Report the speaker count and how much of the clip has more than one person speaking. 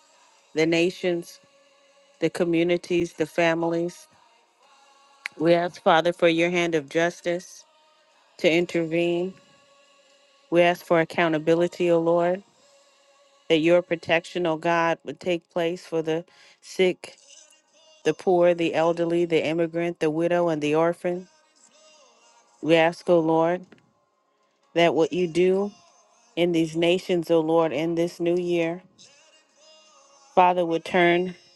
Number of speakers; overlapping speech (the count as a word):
one, no overlap